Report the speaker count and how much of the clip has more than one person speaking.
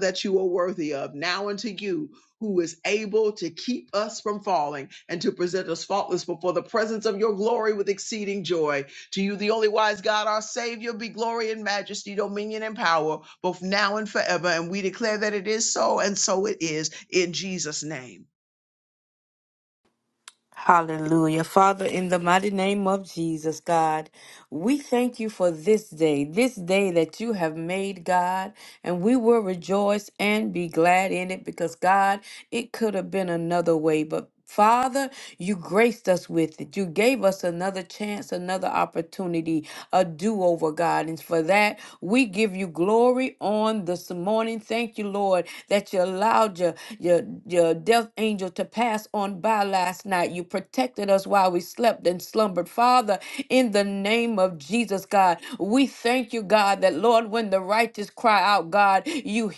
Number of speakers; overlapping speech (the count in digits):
2, no overlap